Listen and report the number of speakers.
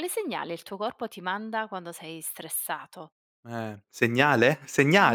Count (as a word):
two